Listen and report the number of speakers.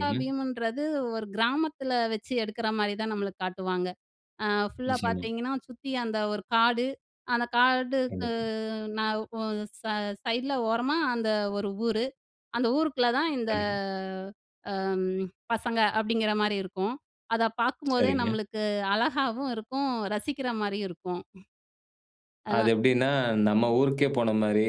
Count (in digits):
2